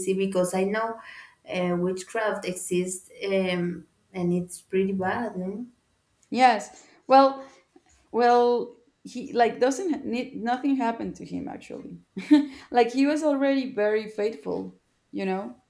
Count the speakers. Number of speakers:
2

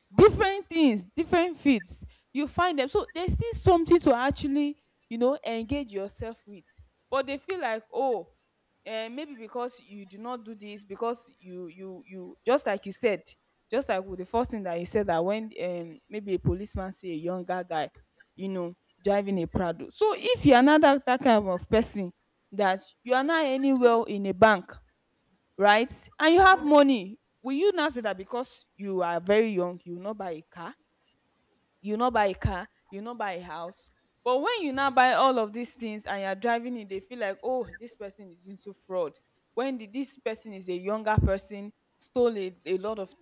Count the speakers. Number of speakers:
1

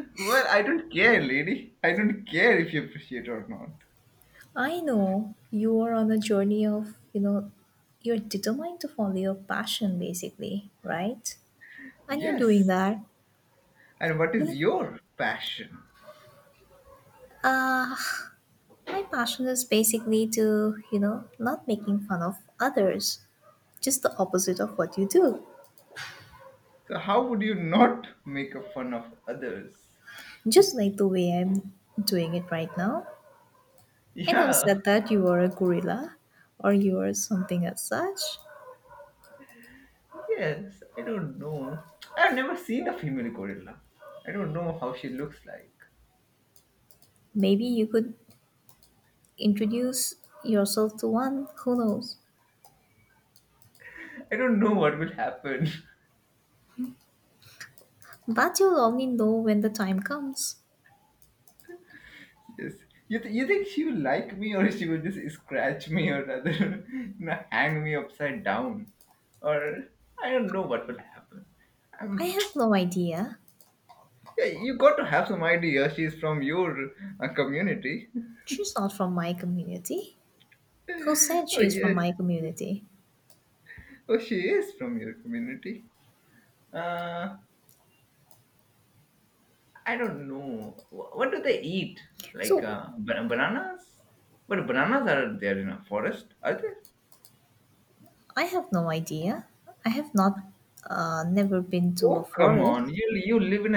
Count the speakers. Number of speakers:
2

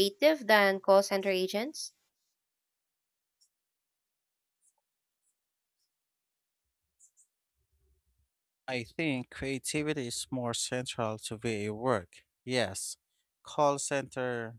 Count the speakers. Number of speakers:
2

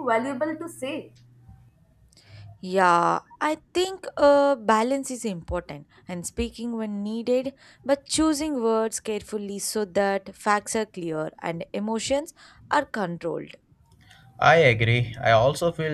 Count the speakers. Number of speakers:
3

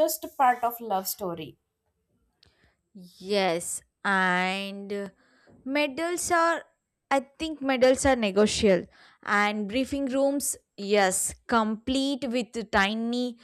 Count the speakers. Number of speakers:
2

